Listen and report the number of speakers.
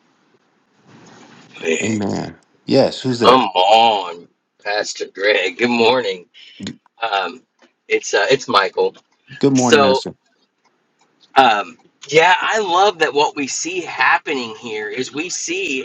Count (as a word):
two